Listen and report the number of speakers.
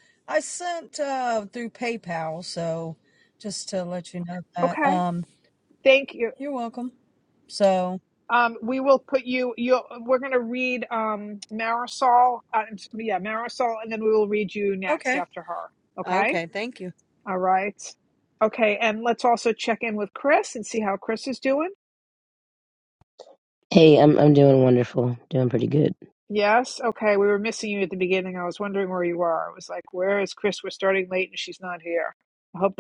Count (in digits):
3